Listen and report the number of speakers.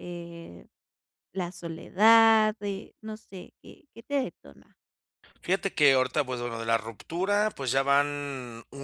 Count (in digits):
2